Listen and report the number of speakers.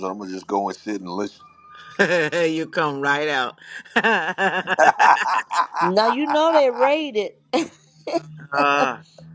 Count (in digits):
3